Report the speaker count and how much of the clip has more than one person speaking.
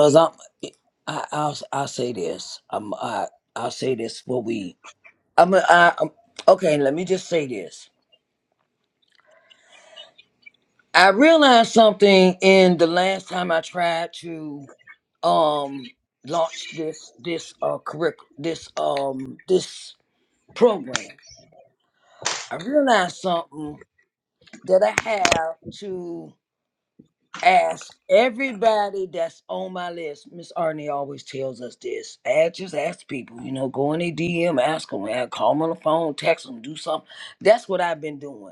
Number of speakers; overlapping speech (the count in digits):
1, no overlap